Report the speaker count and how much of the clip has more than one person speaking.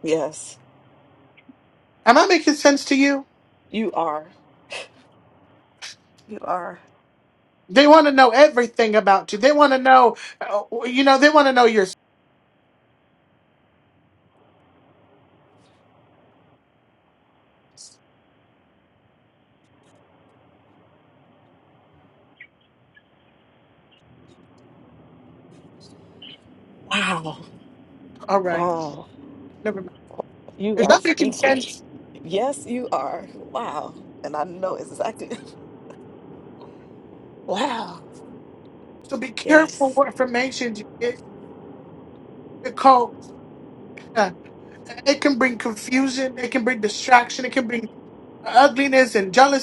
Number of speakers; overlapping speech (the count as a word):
two, about 3%